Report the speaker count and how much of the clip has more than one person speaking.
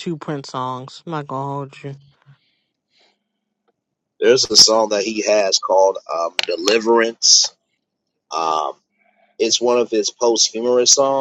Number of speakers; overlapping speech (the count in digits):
2, no overlap